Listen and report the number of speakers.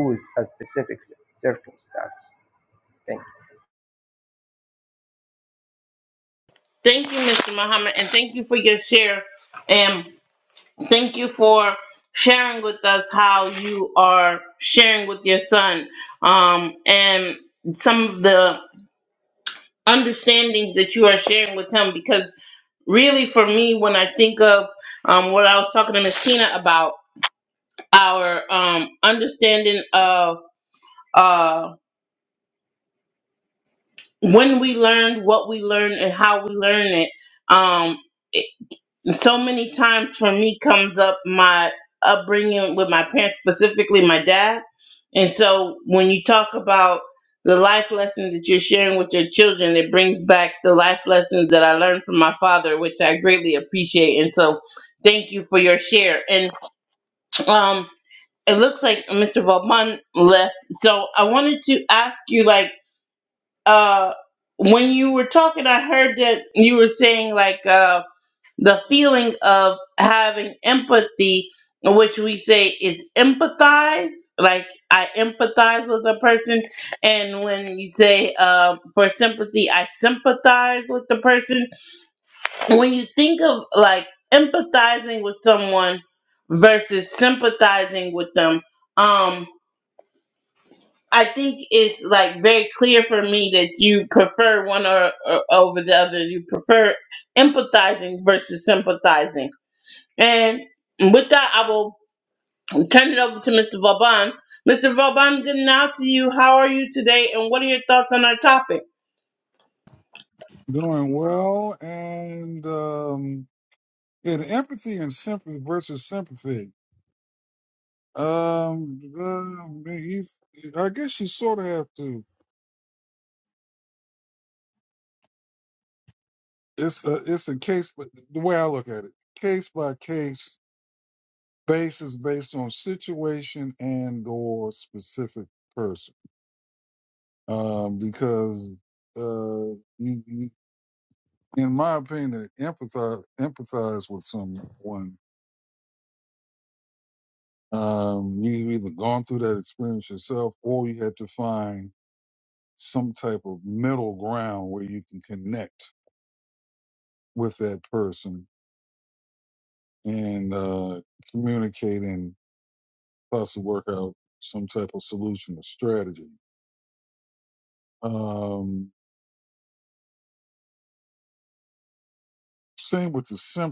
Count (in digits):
3